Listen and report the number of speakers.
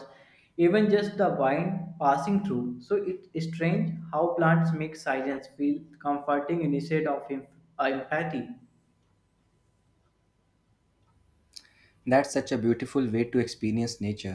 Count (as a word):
two